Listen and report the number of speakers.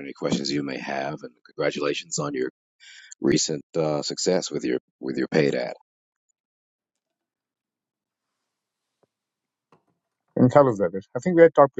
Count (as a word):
two